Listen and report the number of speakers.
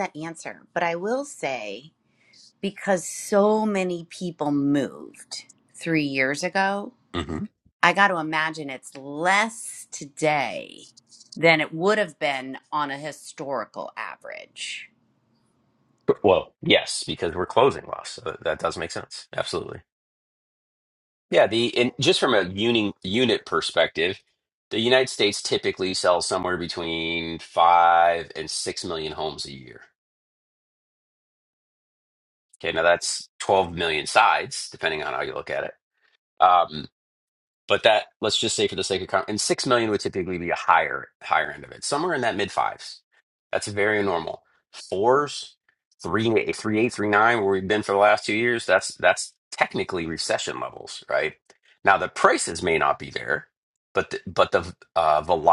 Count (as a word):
two